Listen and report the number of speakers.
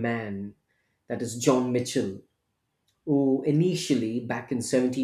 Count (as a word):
one